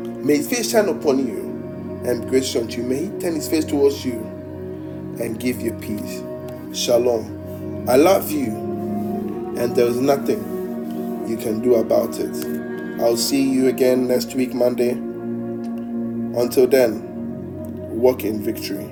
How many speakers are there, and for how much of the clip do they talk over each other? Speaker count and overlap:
1, no overlap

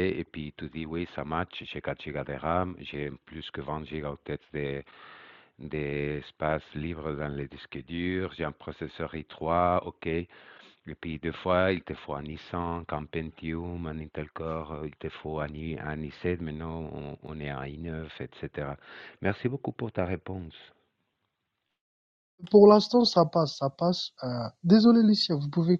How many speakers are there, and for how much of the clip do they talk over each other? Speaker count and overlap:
2, no overlap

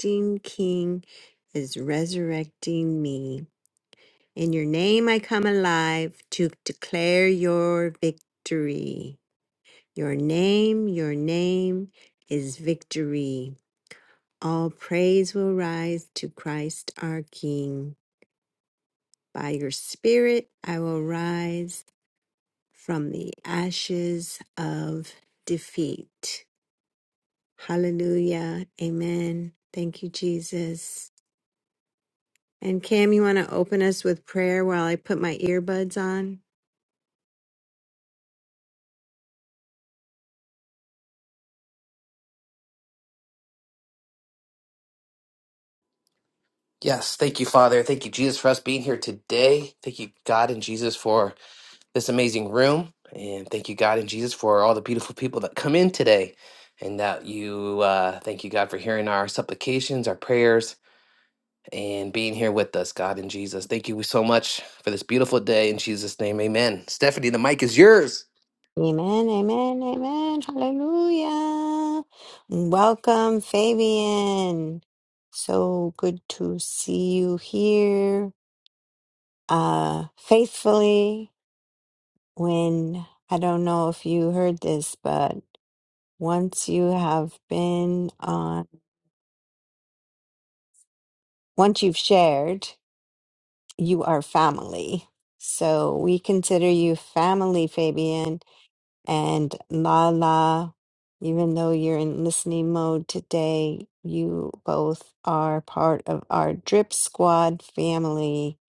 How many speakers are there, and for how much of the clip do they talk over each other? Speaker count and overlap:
2, no overlap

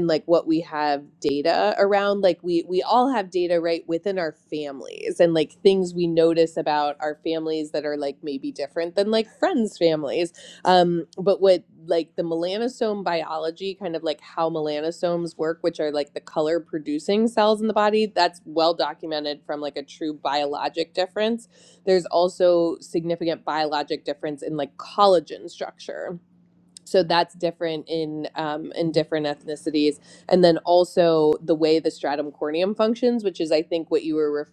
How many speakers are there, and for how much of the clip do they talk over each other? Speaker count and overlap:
1, no overlap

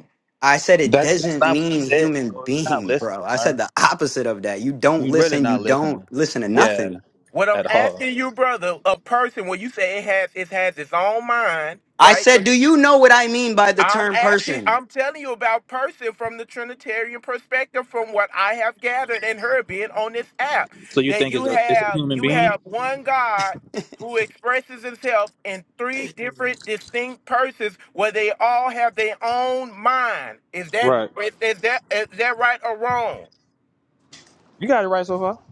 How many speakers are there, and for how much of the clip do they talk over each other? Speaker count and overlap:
3, about 21%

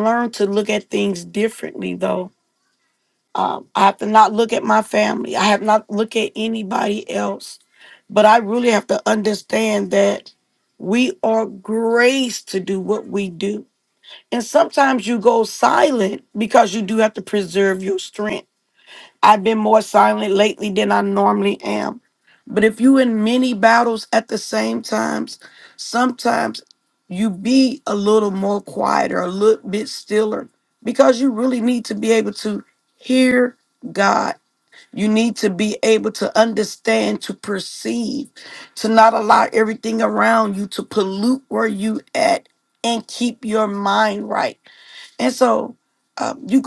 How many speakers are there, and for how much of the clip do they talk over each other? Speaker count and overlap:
1, no overlap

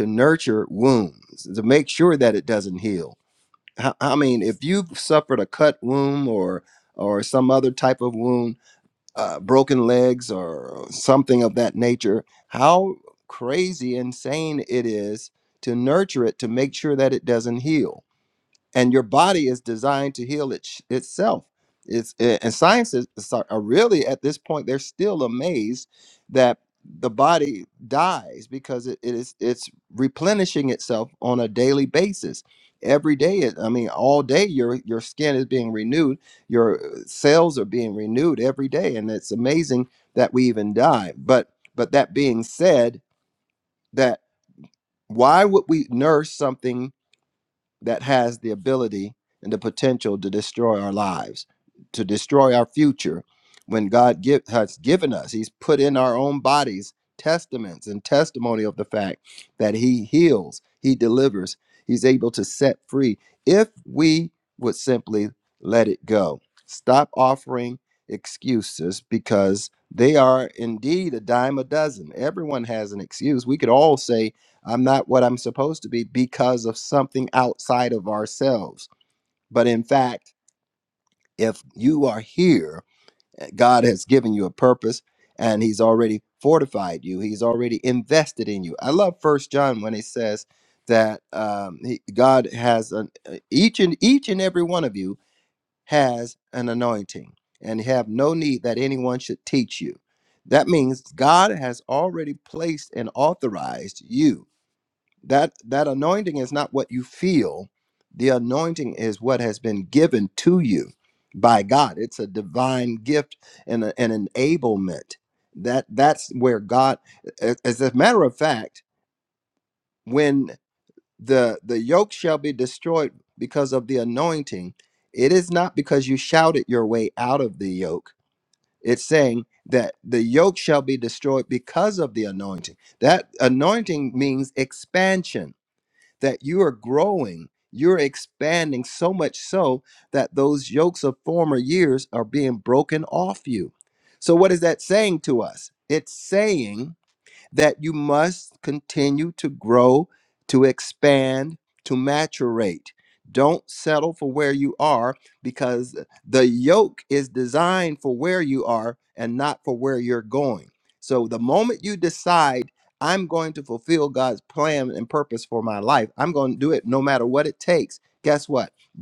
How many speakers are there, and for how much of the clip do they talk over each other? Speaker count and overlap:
1, no overlap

